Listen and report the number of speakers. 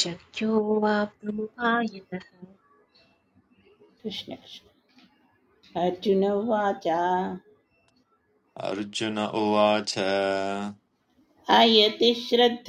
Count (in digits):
3